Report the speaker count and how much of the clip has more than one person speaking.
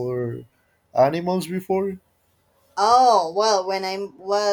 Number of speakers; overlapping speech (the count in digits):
2, no overlap